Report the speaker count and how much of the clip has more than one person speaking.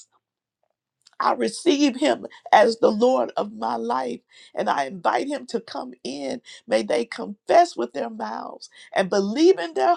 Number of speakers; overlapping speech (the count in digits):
1, no overlap